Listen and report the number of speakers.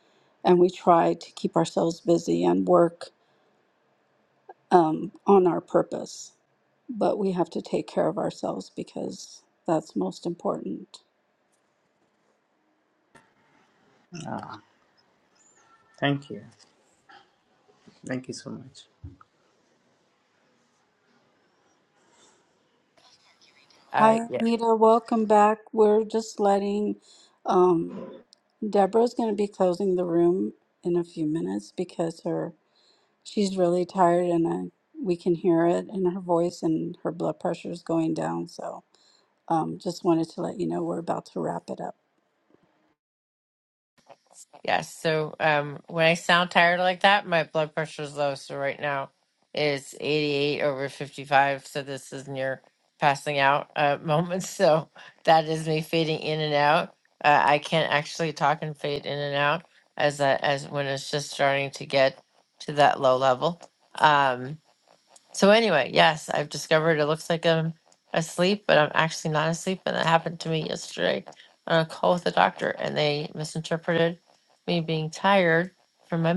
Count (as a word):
three